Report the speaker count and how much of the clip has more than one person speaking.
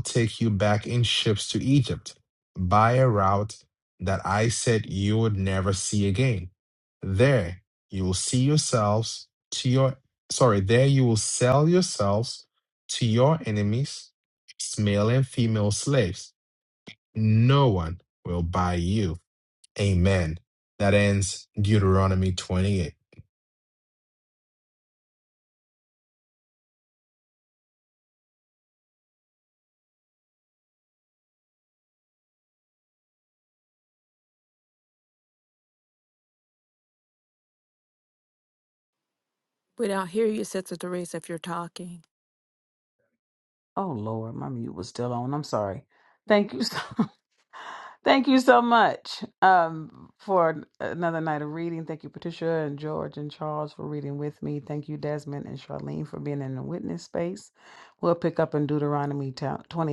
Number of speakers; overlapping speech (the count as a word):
three, no overlap